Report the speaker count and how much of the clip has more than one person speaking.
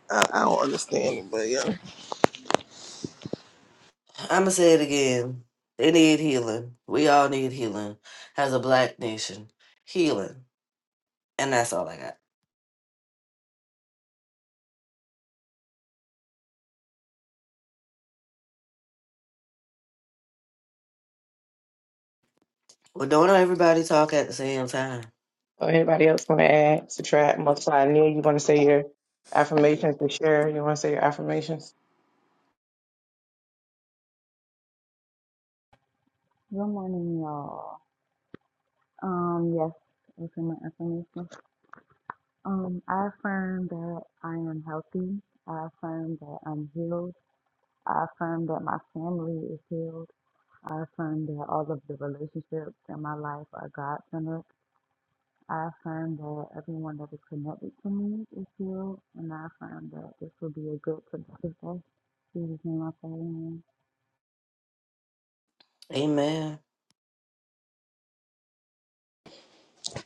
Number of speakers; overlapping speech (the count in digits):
4, no overlap